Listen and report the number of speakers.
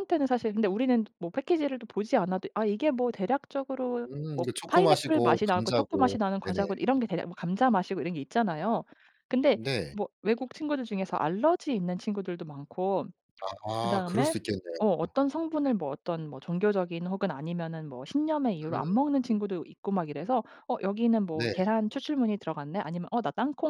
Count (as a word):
two